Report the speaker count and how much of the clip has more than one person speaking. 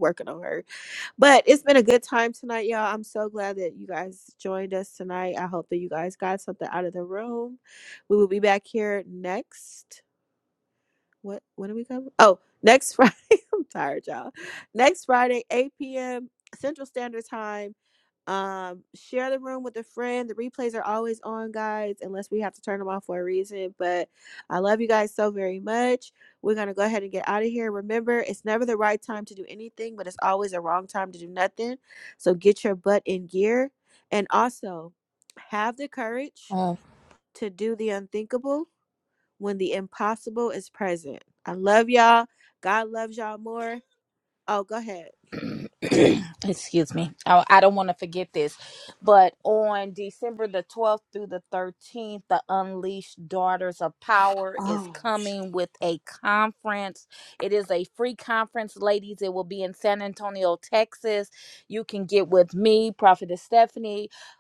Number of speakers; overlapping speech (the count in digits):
2, about 1%